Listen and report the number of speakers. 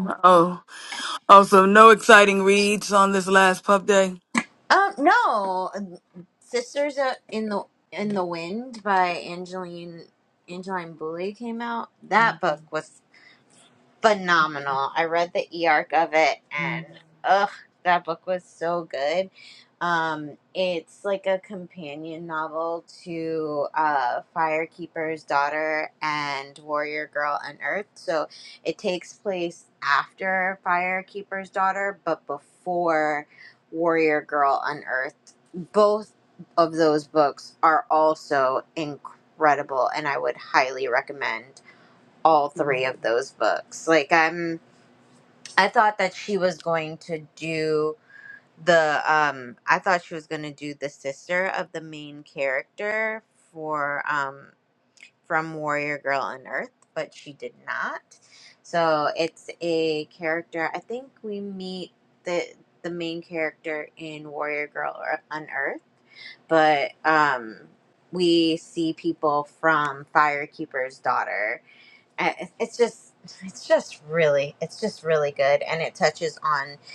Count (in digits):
2